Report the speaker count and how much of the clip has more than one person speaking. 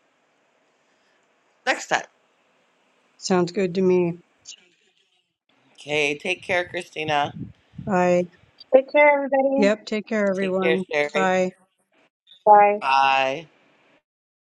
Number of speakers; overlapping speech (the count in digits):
3, about 7%